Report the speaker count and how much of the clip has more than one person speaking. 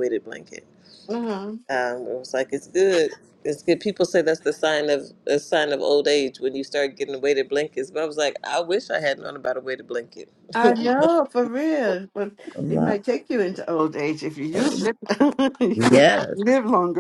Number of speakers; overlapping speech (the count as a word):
three, about 2%